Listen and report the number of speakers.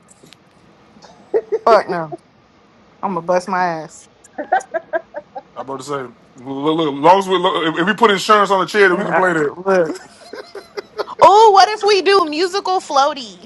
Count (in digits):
2